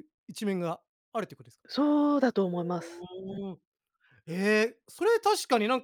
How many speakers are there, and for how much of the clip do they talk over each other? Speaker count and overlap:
two, about 4%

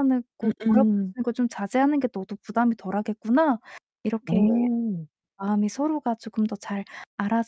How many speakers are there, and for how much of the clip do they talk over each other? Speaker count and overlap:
two, about 8%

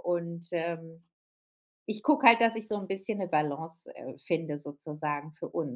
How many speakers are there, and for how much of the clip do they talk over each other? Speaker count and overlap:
one, no overlap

